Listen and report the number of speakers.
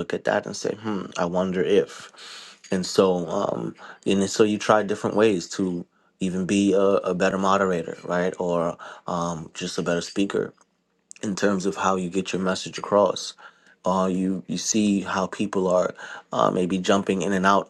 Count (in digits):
1